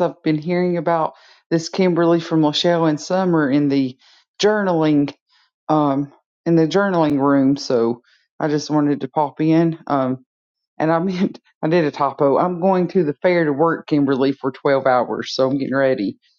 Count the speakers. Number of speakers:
1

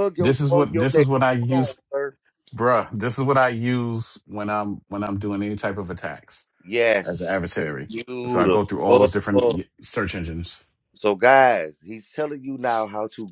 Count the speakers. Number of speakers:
2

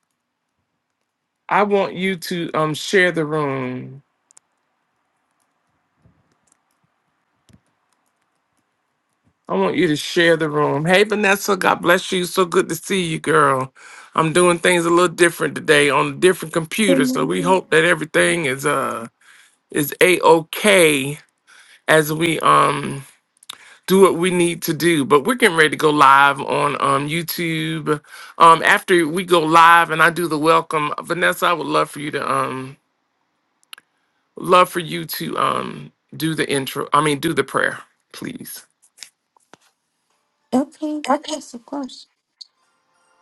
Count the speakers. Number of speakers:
2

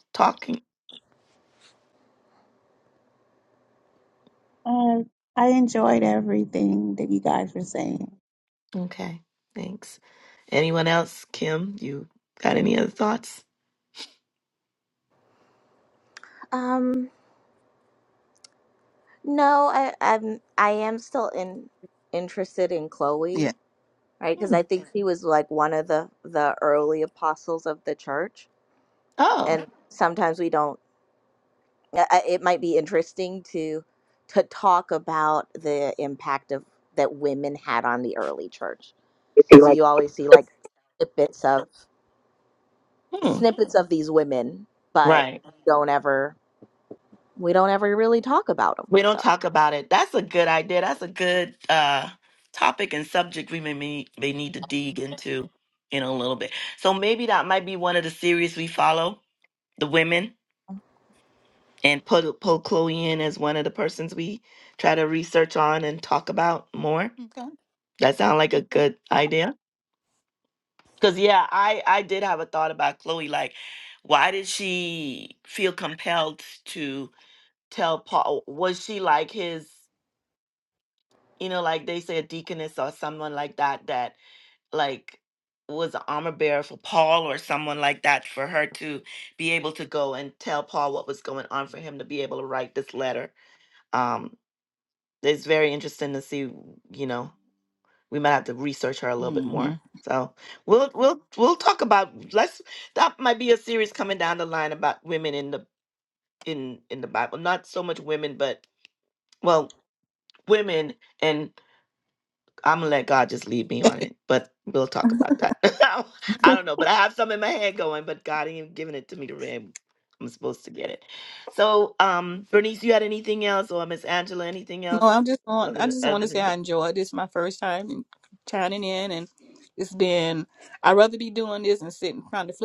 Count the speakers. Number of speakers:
4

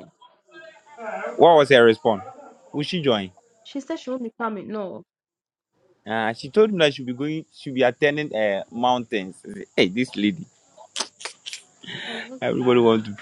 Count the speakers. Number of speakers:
2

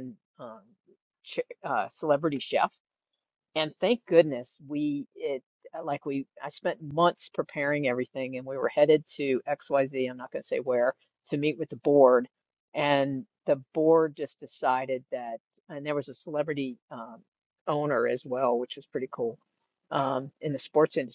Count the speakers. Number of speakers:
1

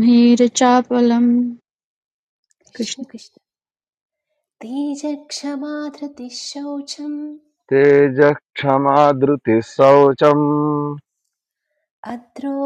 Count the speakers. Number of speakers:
3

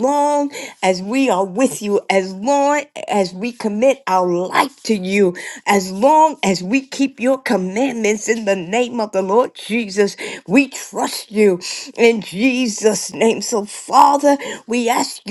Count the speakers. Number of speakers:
1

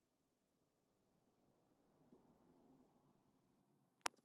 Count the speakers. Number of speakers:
0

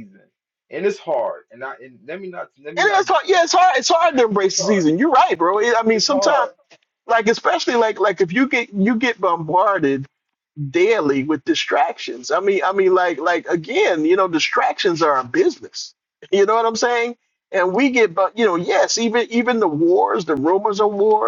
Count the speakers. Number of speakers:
2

